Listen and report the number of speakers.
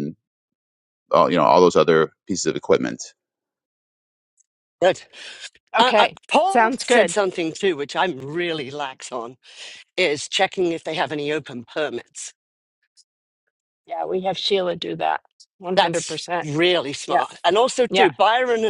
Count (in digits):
3